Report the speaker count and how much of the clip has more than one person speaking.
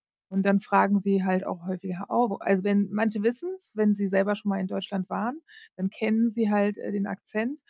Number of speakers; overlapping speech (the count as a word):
one, no overlap